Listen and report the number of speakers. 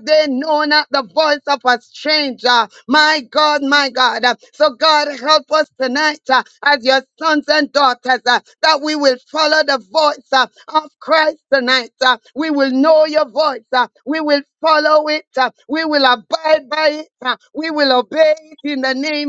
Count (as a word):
one